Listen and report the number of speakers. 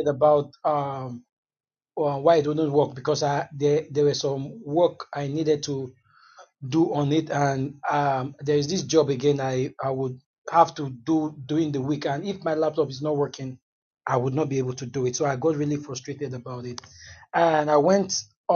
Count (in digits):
1